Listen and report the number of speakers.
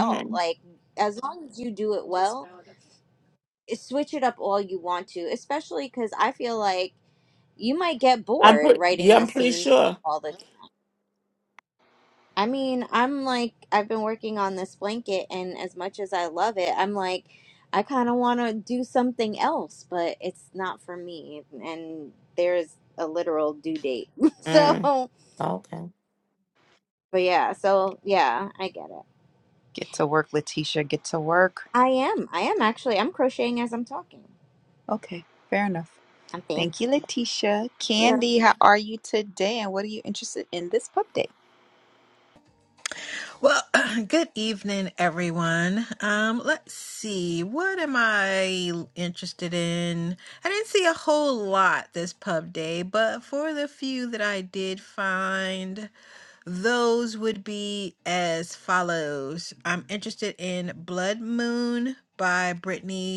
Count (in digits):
4